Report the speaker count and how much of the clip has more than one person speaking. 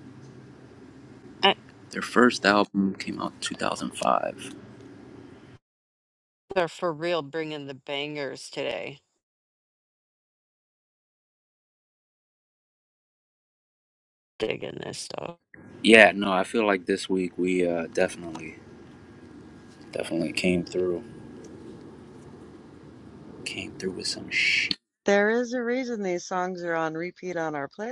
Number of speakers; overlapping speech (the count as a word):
three, no overlap